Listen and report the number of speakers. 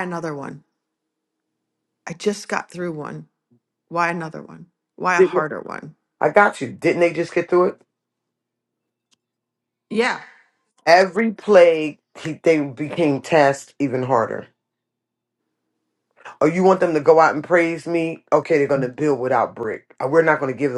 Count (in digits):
2